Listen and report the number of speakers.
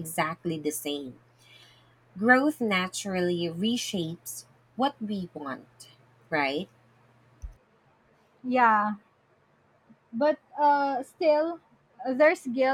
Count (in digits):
2